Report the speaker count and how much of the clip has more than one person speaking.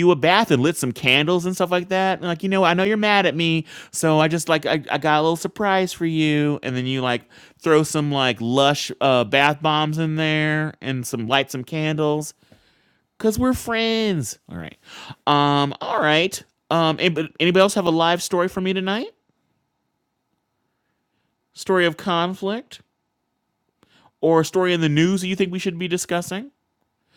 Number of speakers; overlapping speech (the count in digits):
1, no overlap